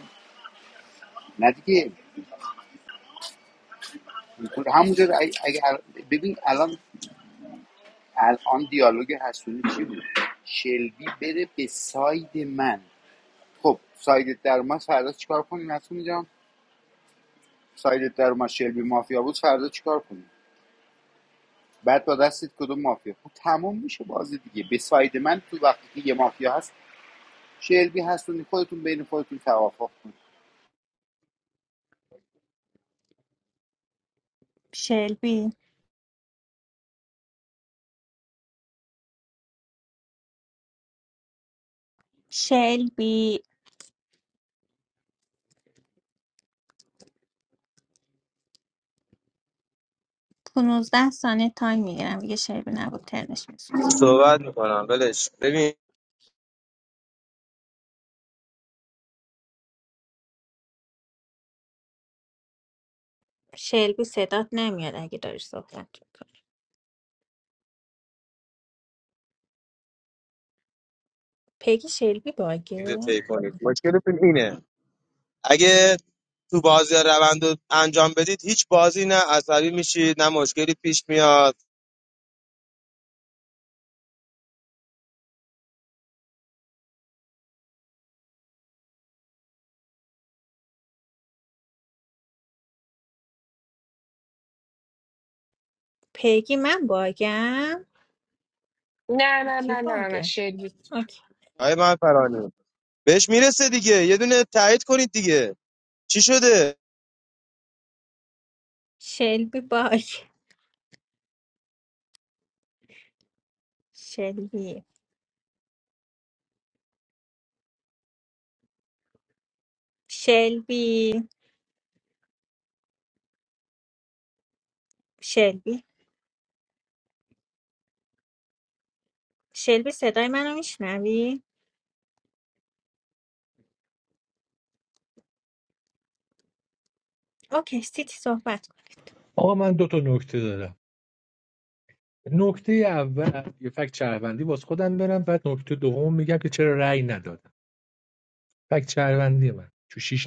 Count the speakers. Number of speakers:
five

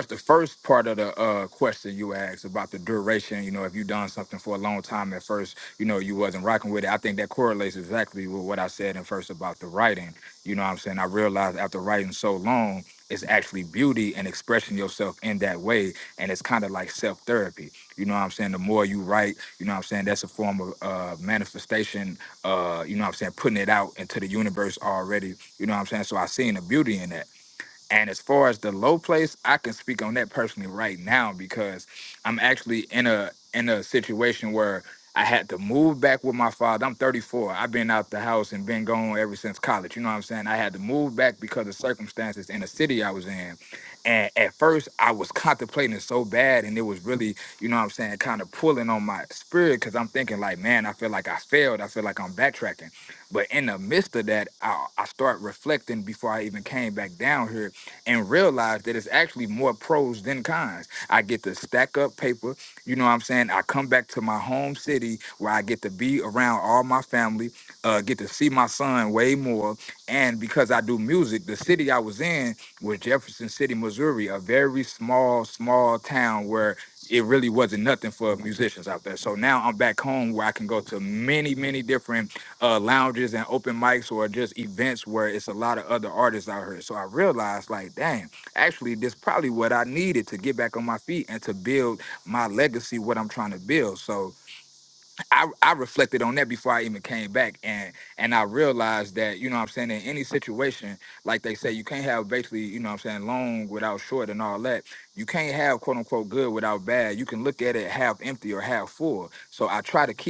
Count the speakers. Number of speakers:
one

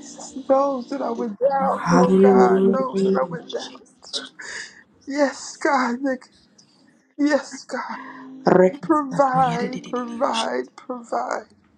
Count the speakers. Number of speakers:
two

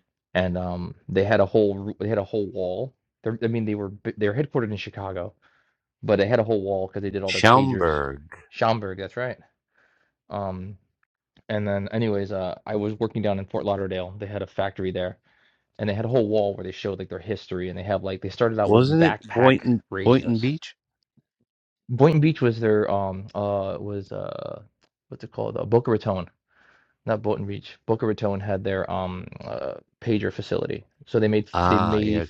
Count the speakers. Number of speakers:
two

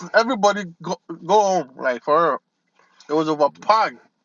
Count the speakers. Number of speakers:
one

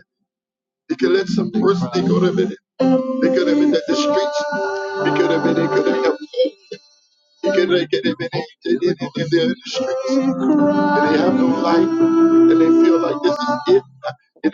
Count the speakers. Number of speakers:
one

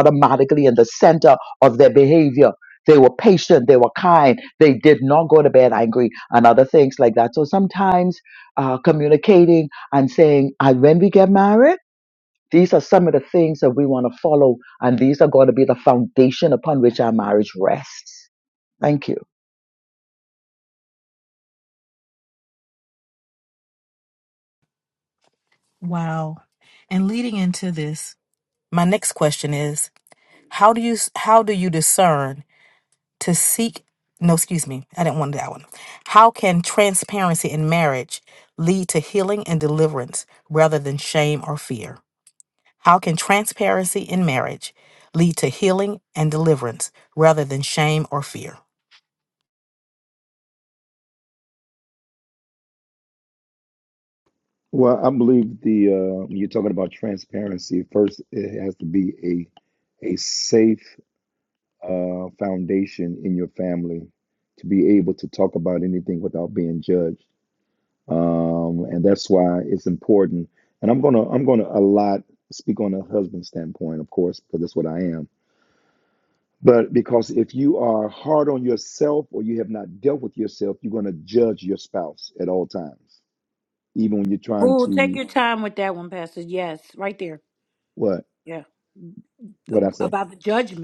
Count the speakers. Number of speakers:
four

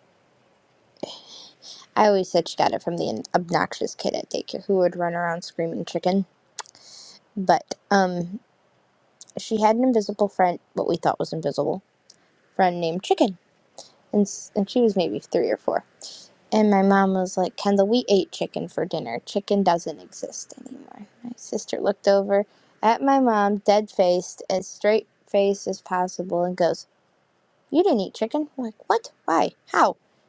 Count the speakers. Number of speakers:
one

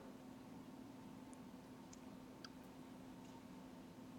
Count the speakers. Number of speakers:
zero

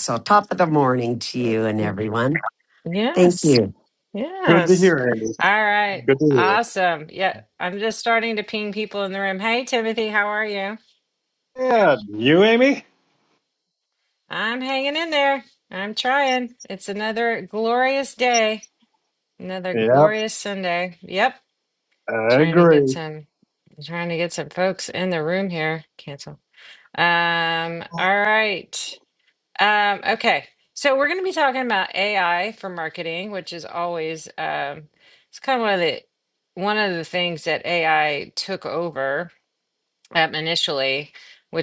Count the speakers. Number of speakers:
three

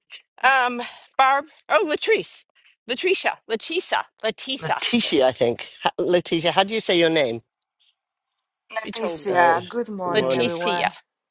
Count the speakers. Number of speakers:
three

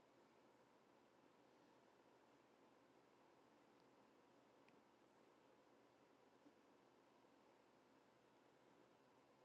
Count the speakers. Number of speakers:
zero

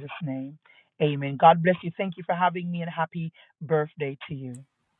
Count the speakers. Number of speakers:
one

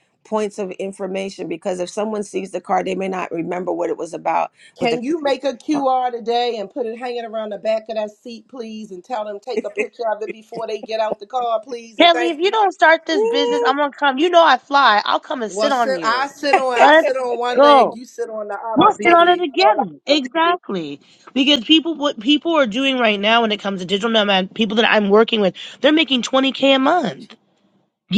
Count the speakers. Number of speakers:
three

